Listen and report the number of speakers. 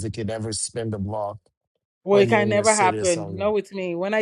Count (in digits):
2